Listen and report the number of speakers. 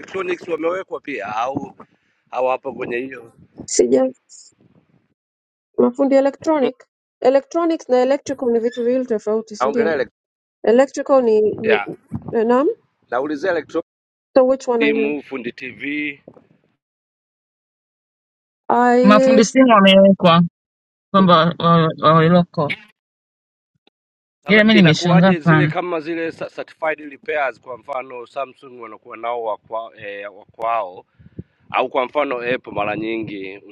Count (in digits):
3